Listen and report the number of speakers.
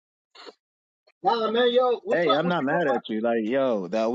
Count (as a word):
two